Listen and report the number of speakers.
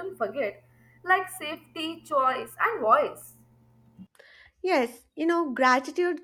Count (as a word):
two